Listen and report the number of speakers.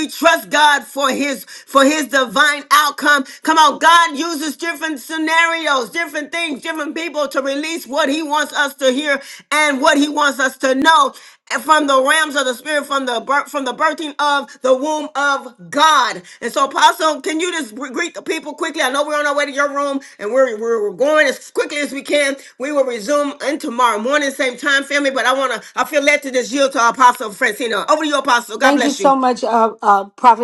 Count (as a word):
two